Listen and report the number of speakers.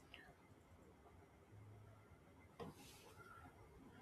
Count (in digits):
0